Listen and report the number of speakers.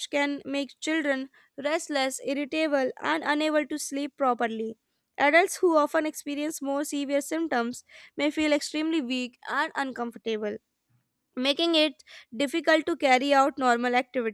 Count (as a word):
one